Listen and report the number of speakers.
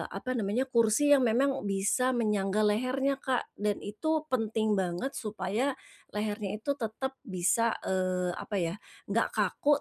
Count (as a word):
one